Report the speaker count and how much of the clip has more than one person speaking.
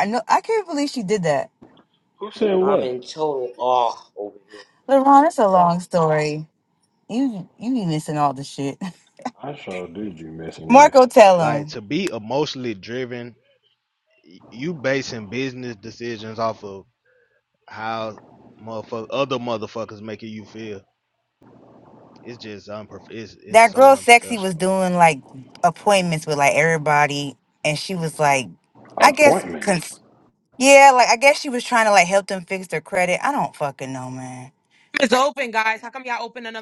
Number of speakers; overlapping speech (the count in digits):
5, about 8%